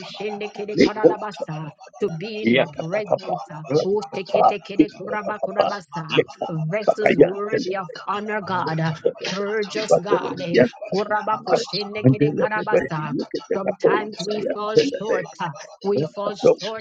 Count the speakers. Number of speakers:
three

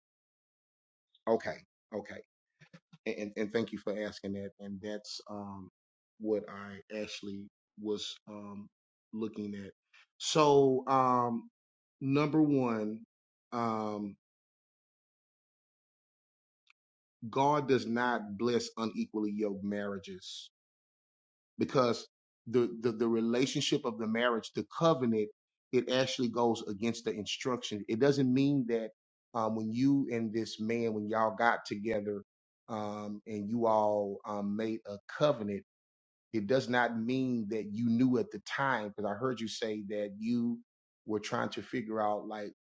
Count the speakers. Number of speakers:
one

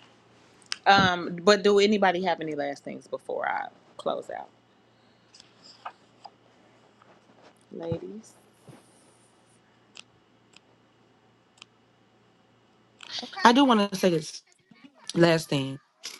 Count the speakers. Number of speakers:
two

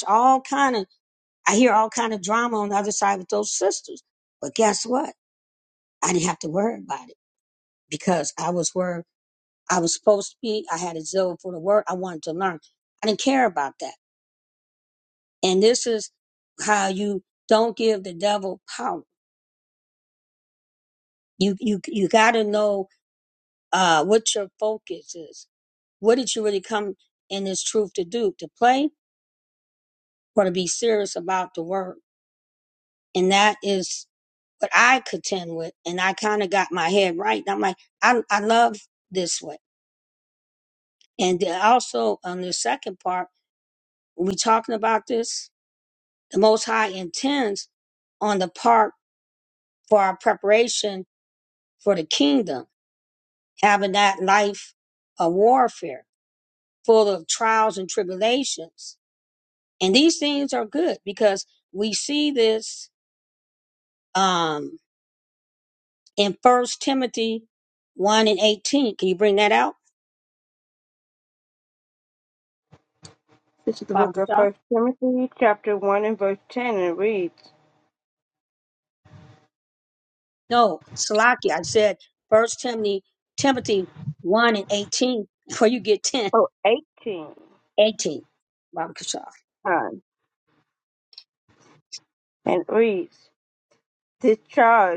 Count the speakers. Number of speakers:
two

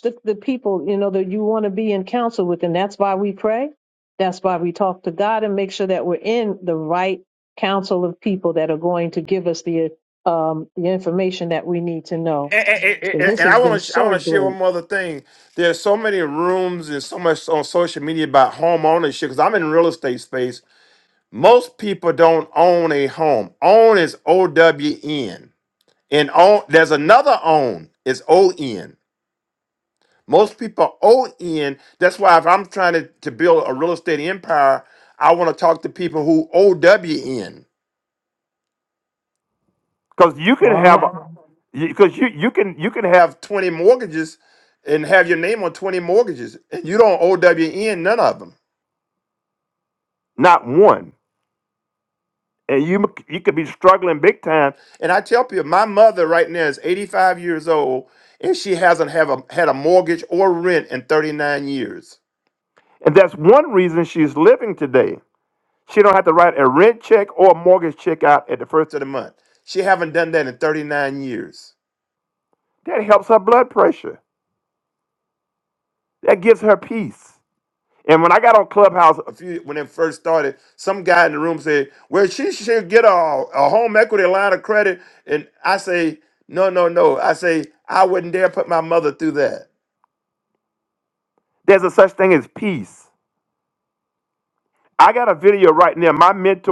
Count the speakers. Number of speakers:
two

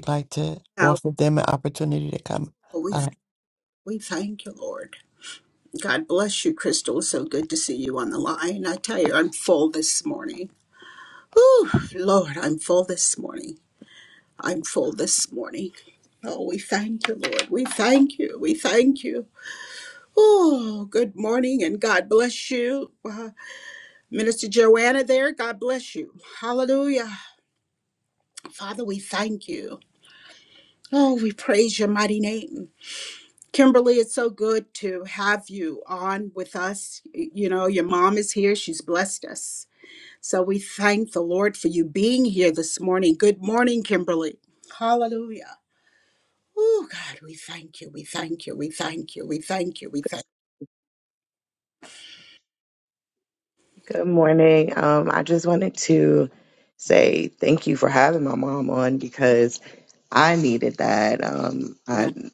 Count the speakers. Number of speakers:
three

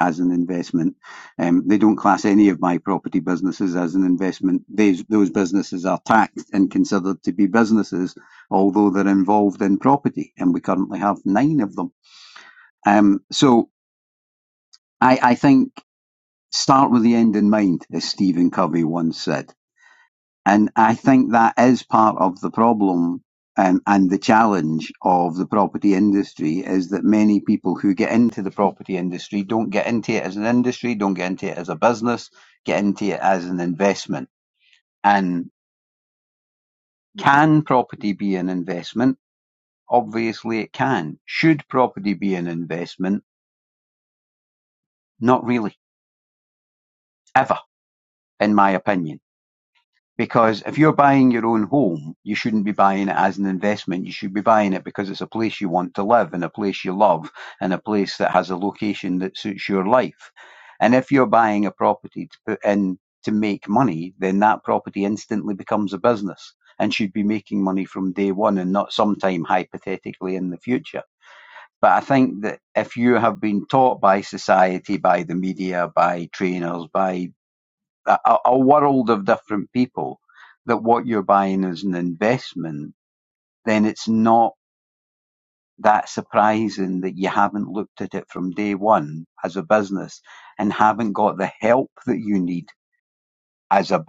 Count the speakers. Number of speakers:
one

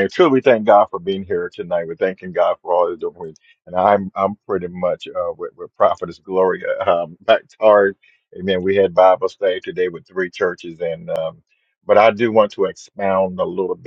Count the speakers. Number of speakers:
one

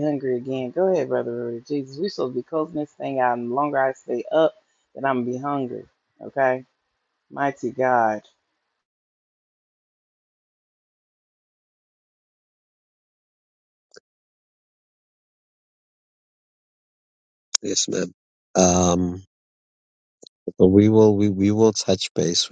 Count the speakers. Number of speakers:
two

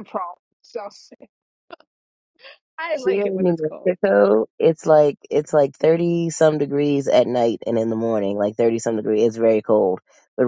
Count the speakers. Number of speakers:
two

